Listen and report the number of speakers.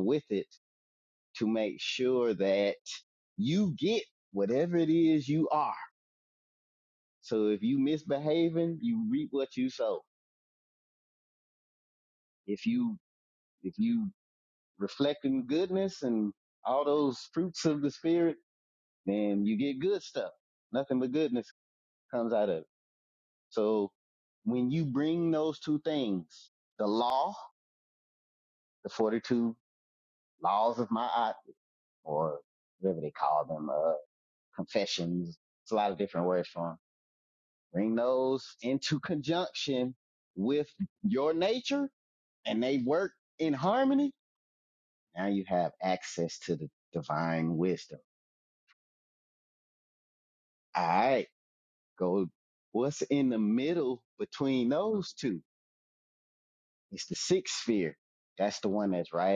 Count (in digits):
1